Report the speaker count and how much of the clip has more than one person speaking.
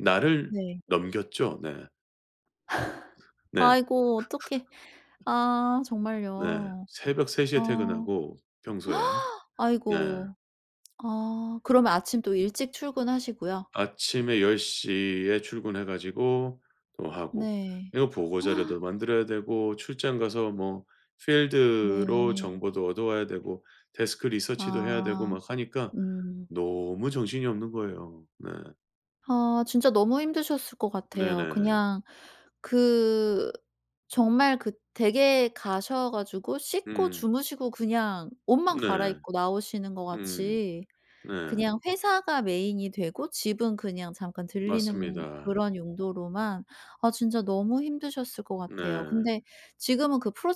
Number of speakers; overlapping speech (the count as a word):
two, about 13%